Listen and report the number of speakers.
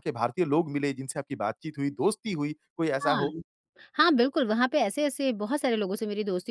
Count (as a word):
two